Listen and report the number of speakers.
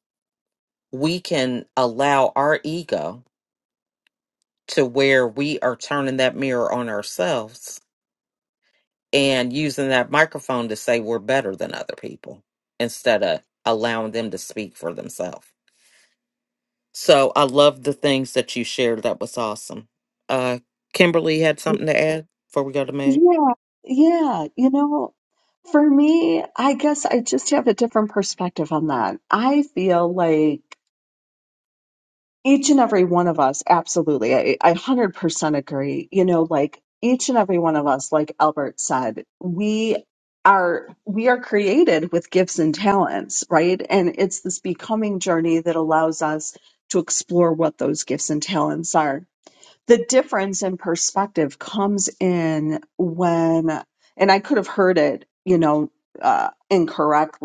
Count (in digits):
2